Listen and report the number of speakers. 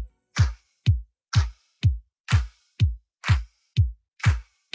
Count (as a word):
zero